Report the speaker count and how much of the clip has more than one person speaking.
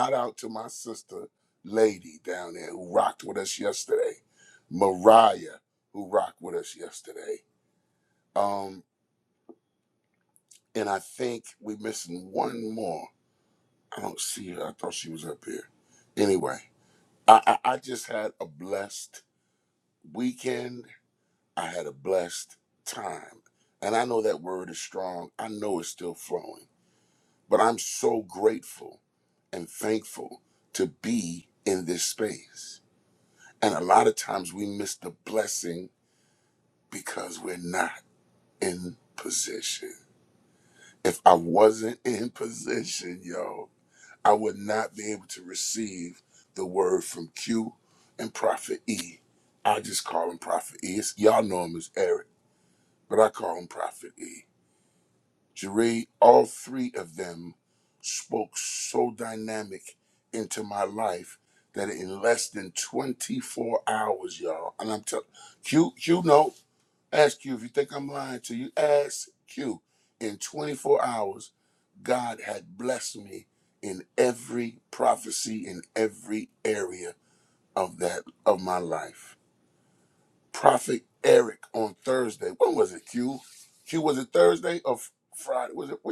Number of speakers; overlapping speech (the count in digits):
1, no overlap